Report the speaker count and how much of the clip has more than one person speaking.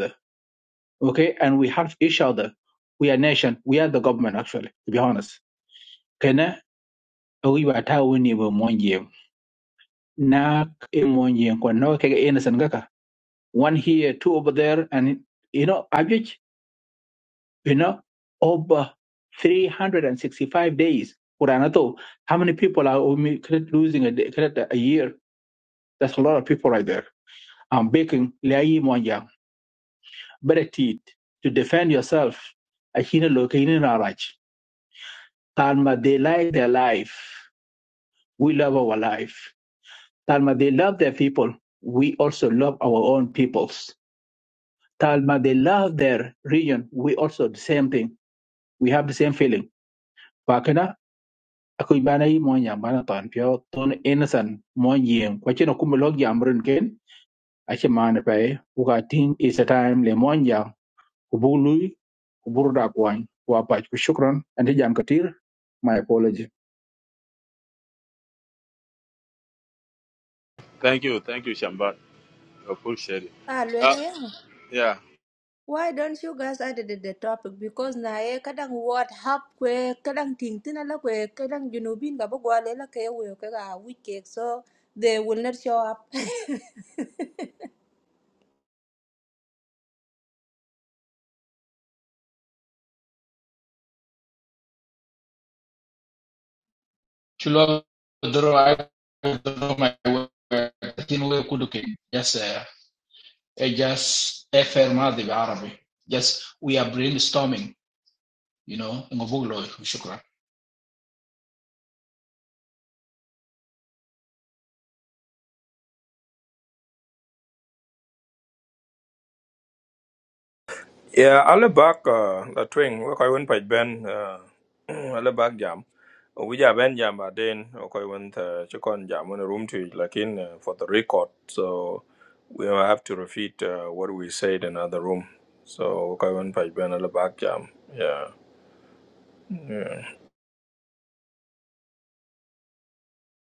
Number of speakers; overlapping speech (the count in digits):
4, under 1%